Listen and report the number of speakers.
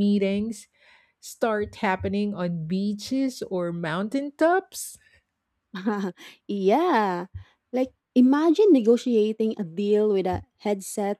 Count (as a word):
two